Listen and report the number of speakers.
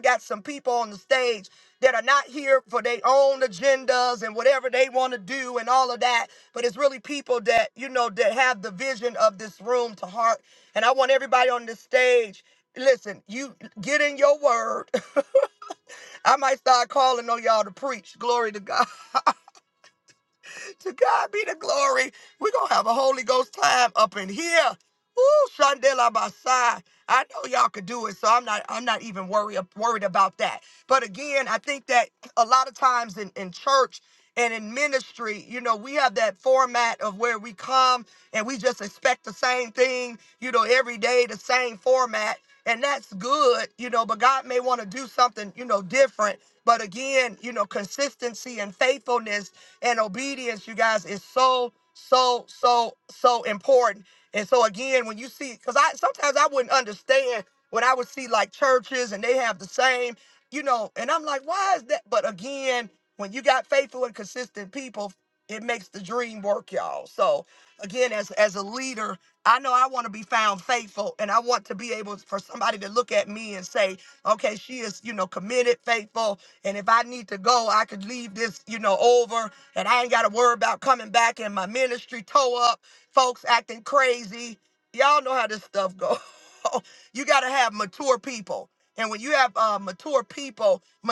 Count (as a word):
one